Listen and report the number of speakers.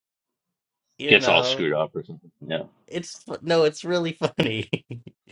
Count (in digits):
2